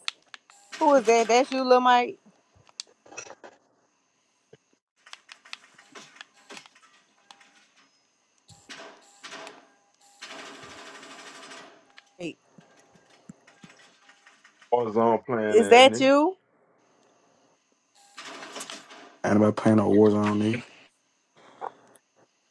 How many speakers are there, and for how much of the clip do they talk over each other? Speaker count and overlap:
three, about 2%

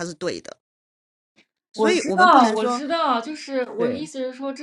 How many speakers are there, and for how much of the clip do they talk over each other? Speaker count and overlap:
two, about 29%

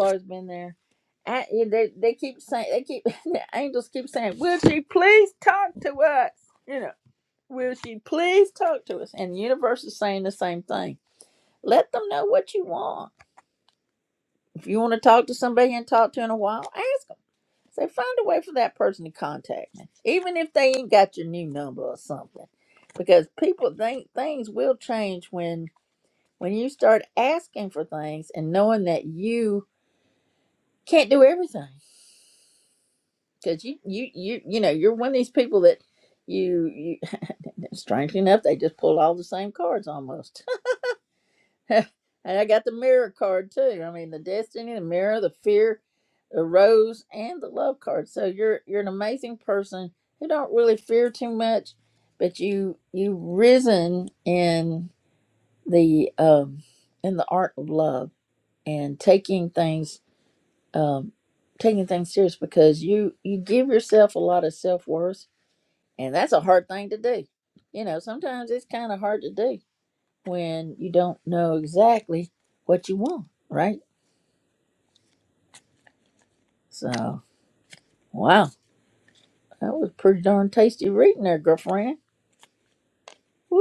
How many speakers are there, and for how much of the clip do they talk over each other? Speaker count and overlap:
one, no overlap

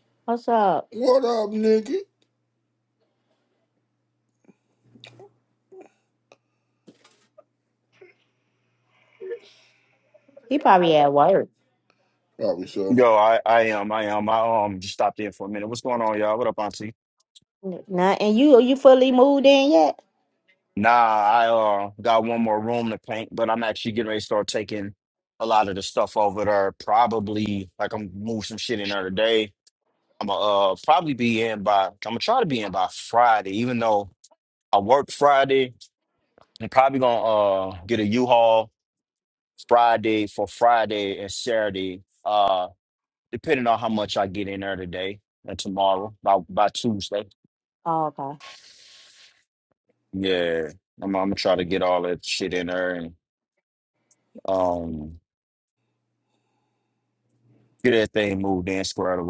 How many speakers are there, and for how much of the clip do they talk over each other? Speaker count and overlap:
three, under 1%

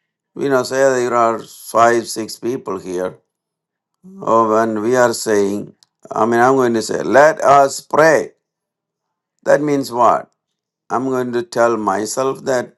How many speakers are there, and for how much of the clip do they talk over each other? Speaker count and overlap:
one, no overlap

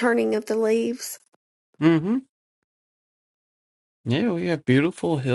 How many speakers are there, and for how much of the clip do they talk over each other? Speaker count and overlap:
two, no overlap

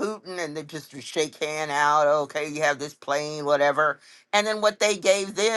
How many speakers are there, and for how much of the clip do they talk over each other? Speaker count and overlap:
one, no overlap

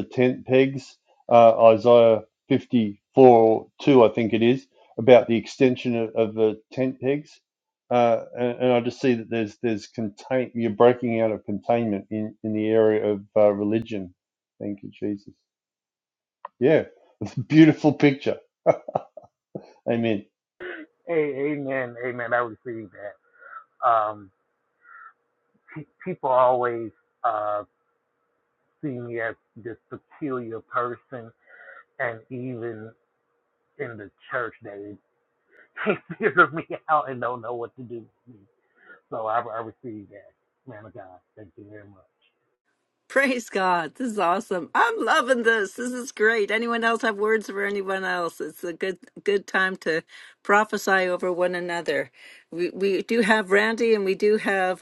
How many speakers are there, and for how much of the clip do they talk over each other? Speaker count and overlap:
three, no overlap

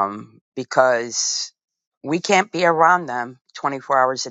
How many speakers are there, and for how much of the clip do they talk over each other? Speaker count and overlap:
one, no overlap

